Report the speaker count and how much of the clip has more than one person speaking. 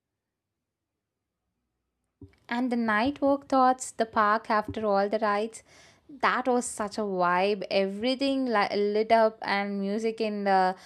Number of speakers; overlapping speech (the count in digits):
1, no overlap